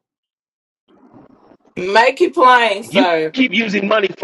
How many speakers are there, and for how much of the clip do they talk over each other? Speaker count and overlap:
2, about 11%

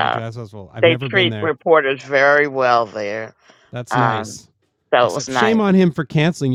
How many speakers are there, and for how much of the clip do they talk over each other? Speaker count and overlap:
2, about 27%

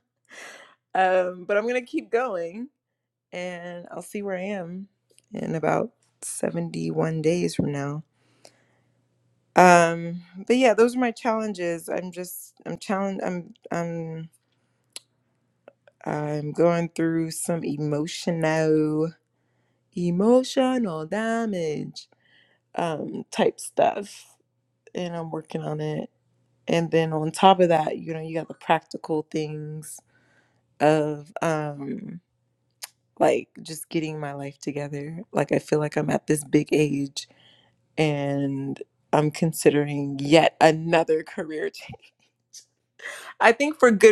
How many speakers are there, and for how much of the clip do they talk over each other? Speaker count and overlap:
1, no overlap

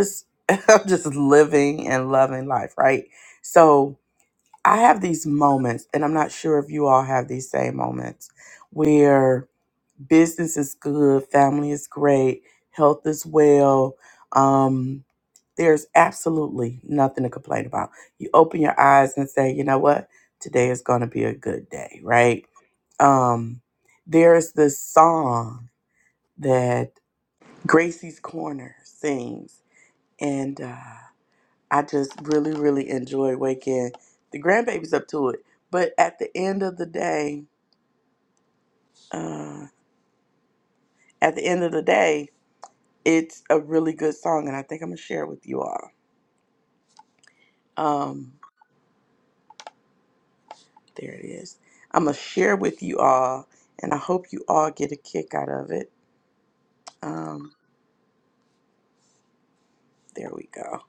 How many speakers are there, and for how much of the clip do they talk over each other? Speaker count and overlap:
1, no overlap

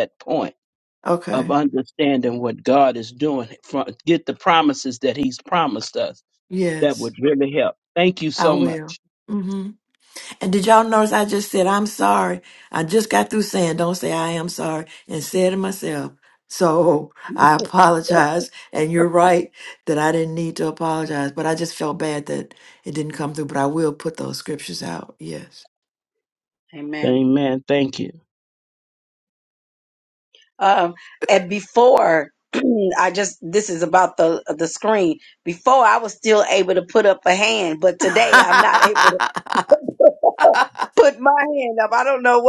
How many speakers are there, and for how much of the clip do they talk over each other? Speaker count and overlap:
3, about 2%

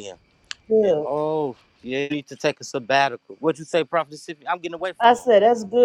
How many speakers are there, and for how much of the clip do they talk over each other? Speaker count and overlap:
2, about 9%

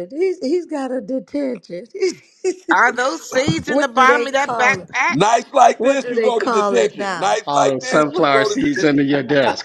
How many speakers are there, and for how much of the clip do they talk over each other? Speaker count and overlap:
4, about 44%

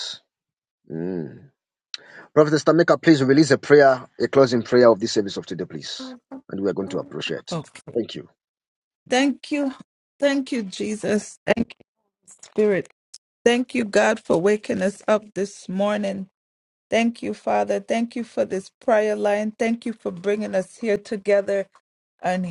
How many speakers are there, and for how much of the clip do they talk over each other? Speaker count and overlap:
2, no overlap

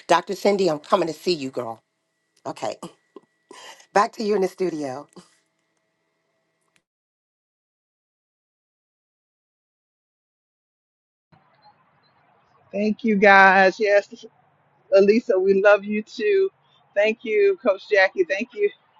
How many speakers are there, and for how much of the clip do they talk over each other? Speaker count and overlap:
2, no overlap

